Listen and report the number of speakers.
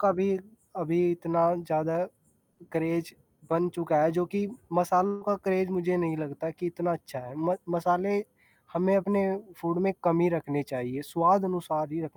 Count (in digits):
1